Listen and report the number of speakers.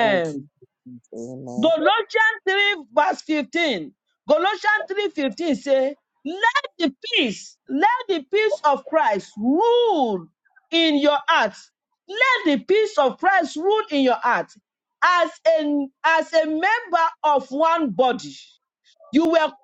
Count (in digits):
2